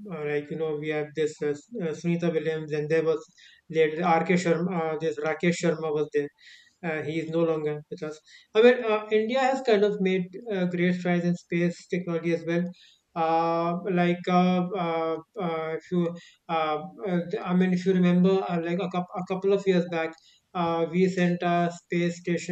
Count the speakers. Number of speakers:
1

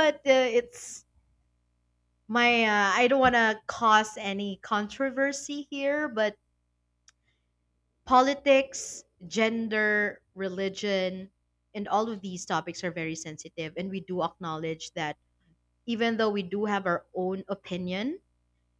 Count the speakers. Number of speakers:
1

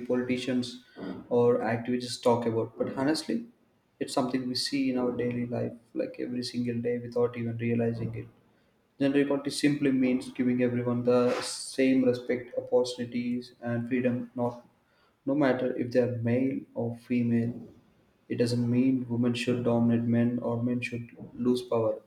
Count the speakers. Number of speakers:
1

